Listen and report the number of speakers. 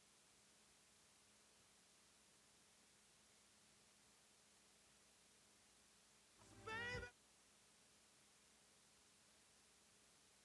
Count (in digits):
0